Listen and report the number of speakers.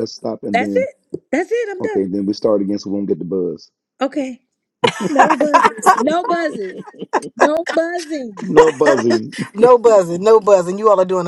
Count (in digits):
3